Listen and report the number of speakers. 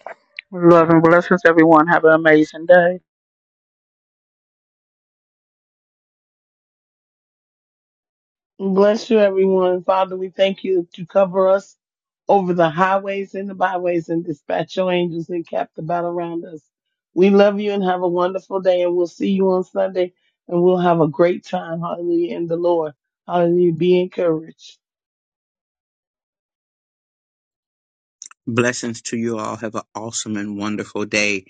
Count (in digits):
3